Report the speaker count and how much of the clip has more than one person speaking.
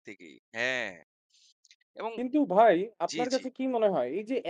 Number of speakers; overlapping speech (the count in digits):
2, about 9%